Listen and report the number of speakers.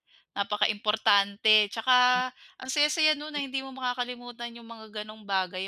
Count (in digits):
1